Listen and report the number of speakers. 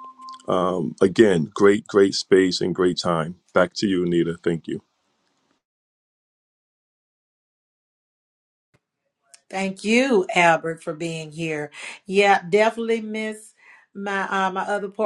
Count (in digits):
2